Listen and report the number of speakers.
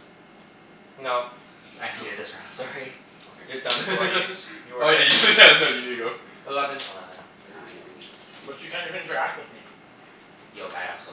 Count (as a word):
four